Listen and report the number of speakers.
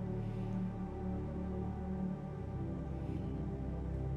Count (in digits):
0